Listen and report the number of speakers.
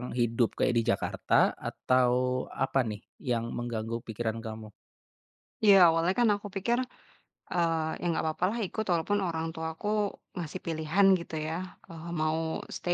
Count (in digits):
2